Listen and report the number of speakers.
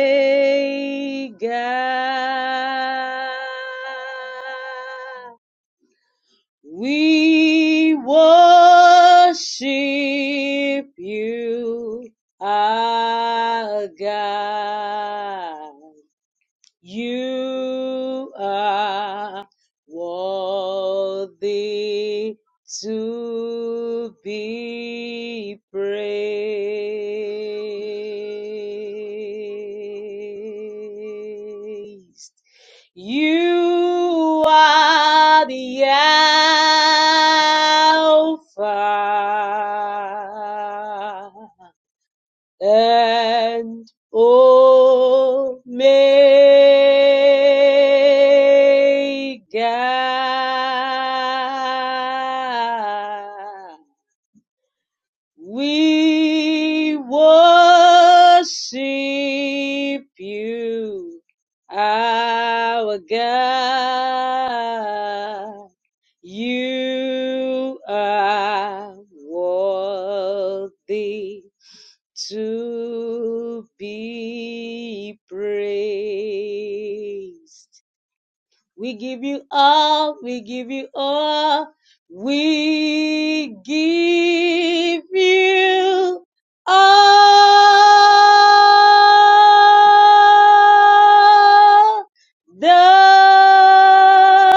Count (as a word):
one